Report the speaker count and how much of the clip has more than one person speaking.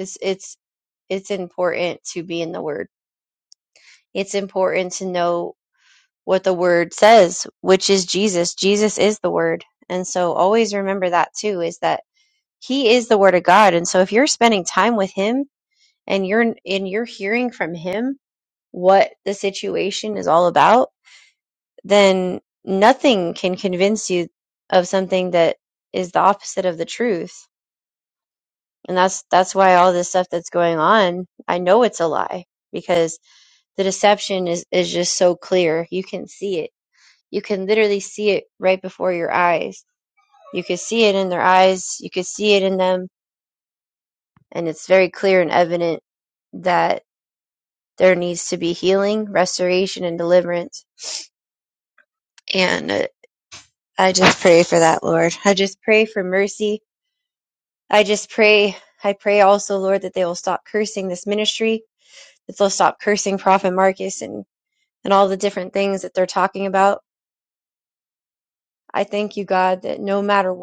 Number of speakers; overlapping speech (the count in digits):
1, no overlap